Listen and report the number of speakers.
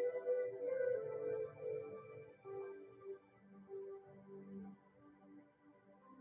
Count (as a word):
zero